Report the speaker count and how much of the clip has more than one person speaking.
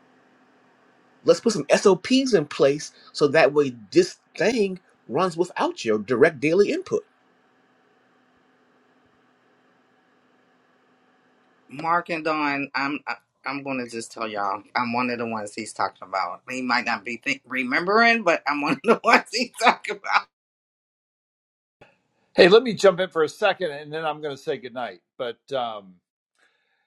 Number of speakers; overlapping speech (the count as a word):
three, no overlap